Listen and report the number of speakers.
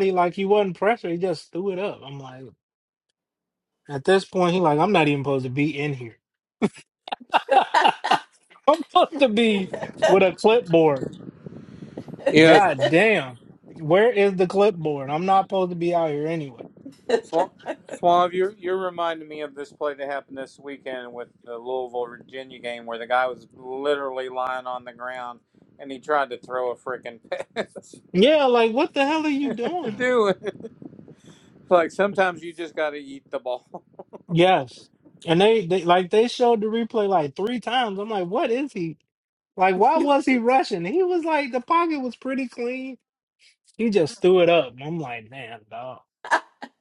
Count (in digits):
2